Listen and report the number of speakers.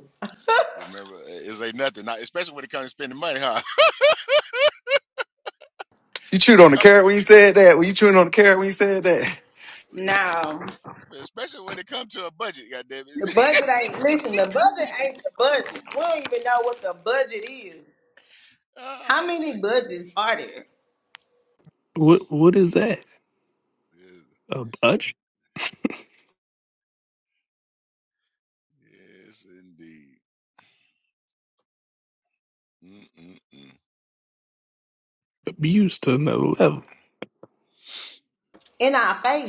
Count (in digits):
4